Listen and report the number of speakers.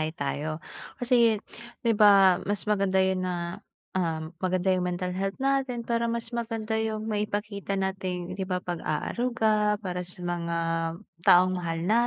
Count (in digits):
1